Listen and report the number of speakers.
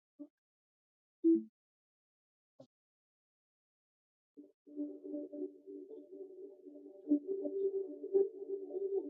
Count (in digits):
0